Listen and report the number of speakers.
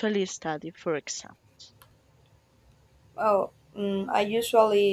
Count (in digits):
2